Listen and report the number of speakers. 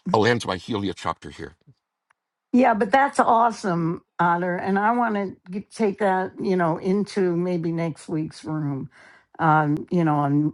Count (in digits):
2